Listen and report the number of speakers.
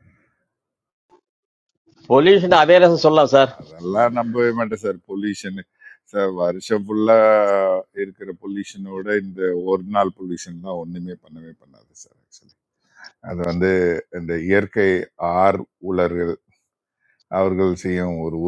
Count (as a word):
two